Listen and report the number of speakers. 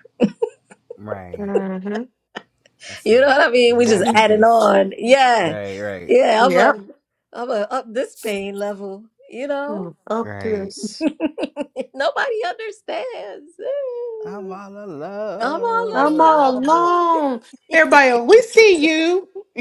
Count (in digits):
3